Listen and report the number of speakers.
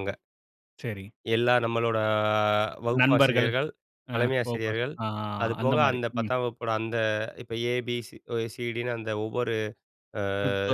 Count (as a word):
two